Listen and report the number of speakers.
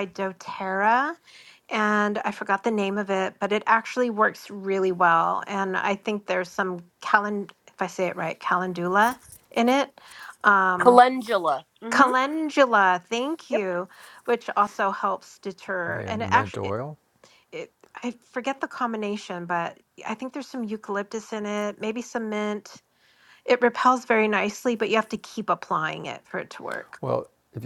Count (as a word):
three